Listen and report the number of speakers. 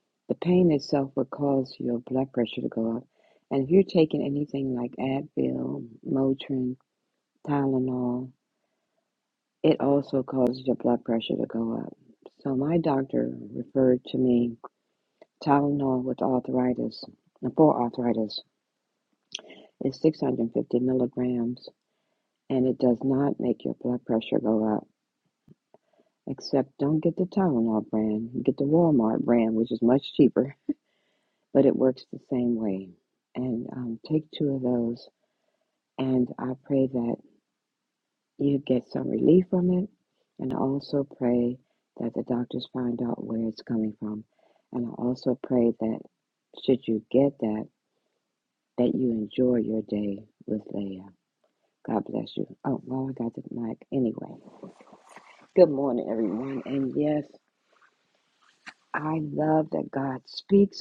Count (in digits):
1